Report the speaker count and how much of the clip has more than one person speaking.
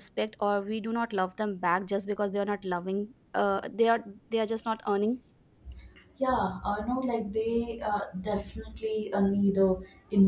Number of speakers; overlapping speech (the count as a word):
two, no overlap